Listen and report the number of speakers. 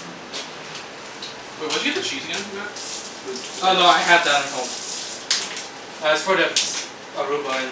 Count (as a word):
two